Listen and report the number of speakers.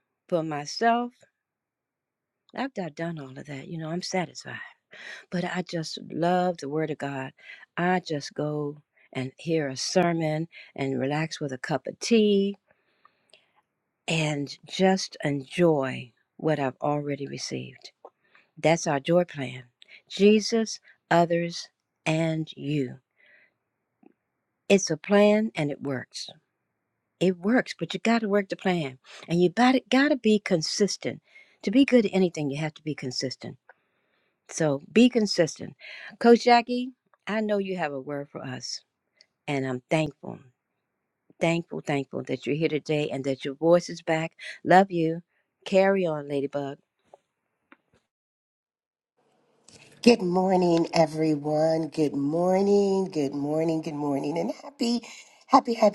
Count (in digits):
2